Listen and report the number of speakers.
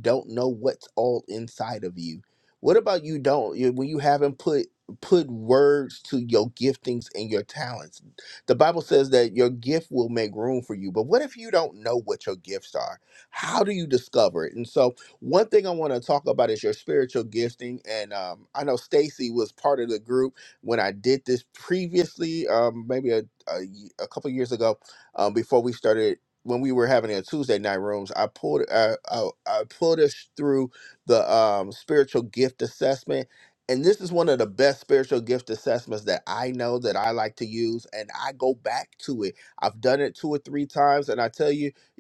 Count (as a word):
one